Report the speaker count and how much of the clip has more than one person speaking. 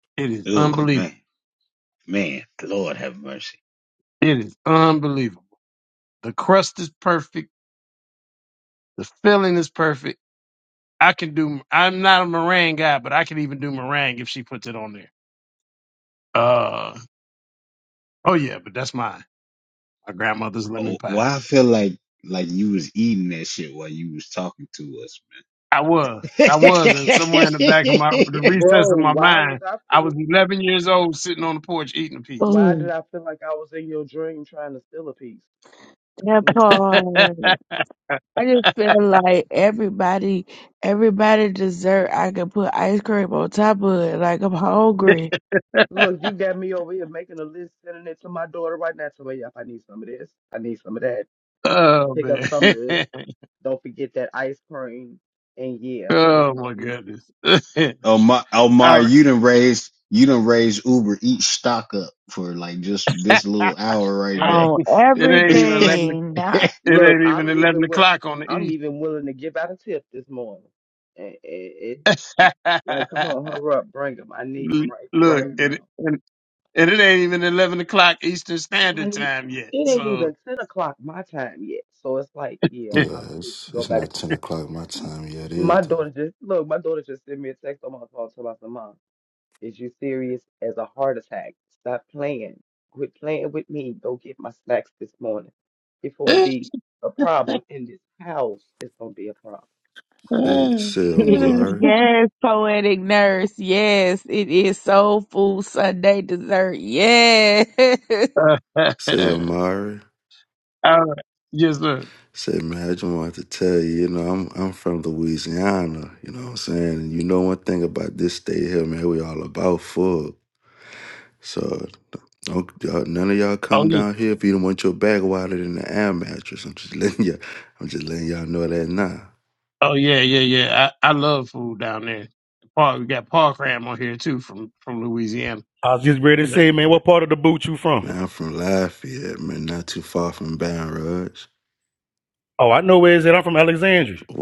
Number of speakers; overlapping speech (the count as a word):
six, about 8%